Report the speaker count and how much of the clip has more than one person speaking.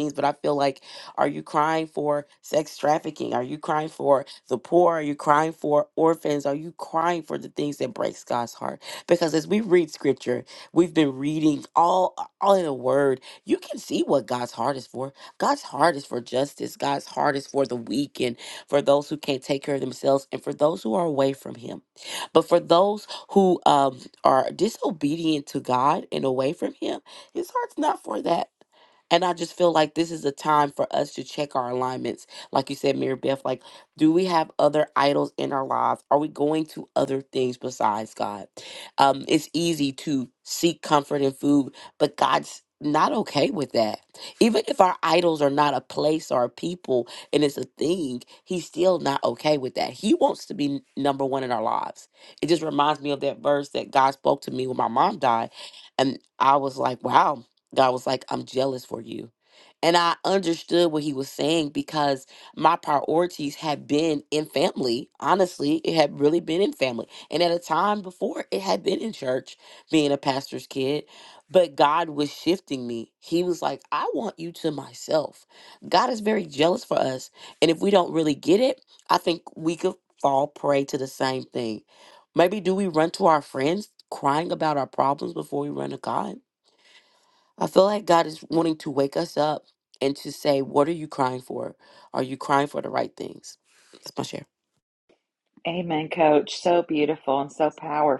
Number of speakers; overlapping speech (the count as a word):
two, no overlap